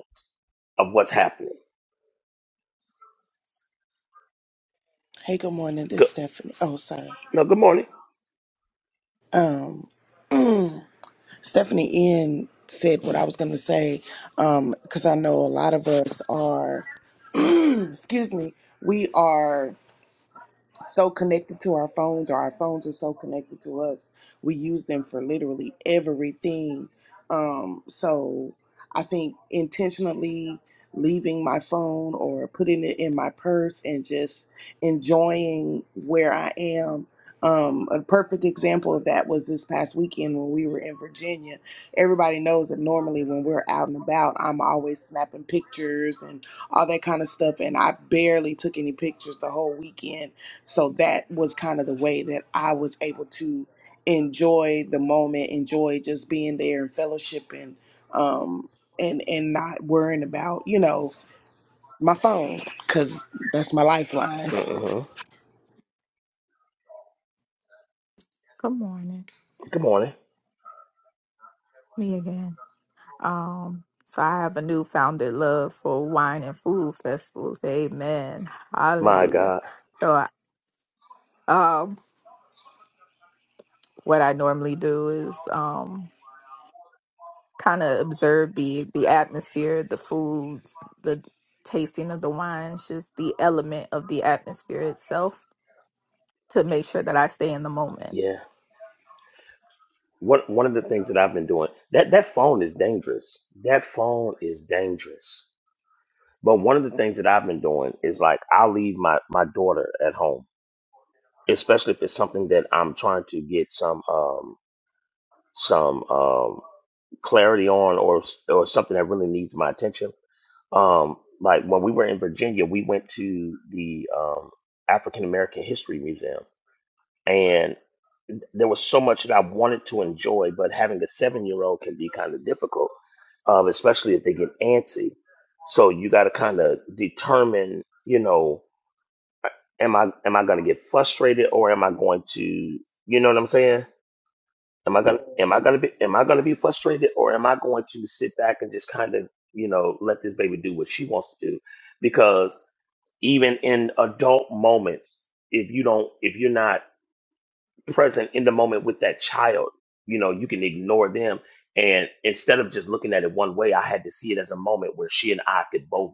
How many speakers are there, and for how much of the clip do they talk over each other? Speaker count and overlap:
3, under 1%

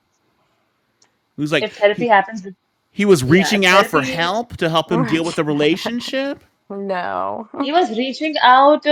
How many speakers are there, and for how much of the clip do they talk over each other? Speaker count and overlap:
3, about 22%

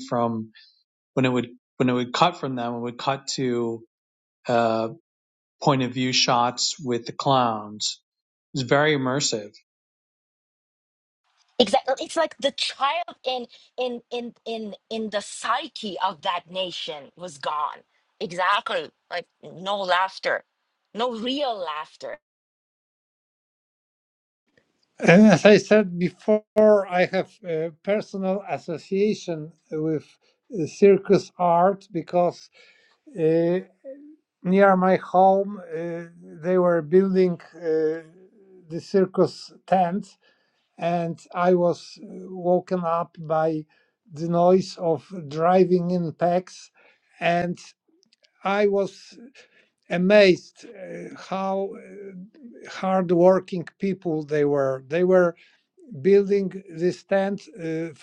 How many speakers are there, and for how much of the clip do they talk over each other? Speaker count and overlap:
3, no overlap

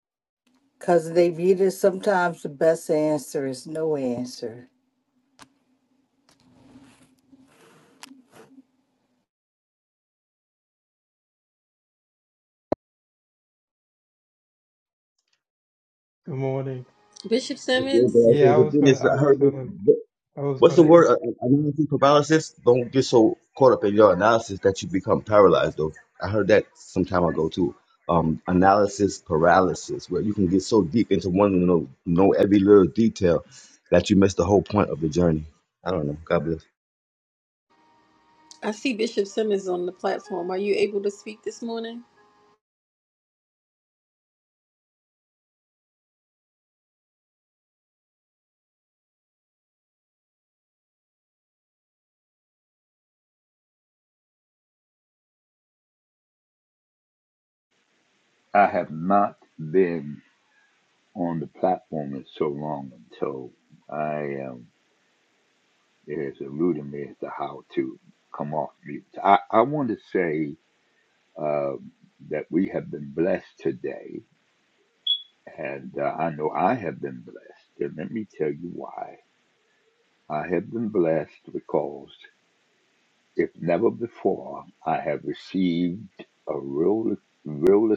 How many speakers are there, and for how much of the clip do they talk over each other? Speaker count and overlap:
5, about 2%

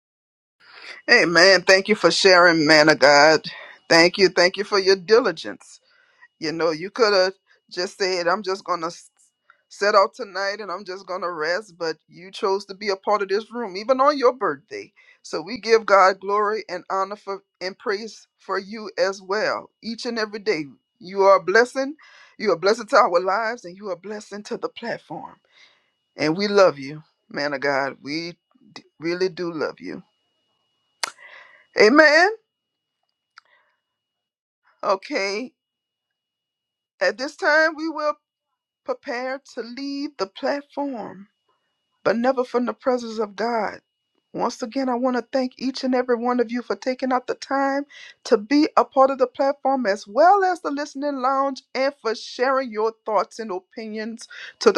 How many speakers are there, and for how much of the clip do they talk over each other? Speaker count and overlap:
1, no overlap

